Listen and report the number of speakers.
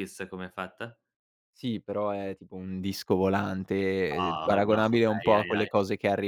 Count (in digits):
2